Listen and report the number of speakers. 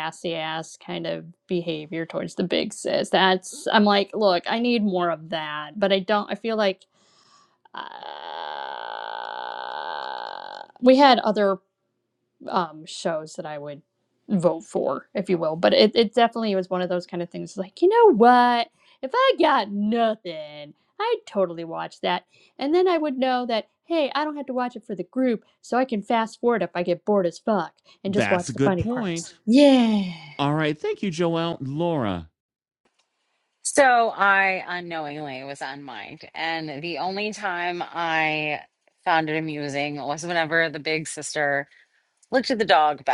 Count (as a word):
three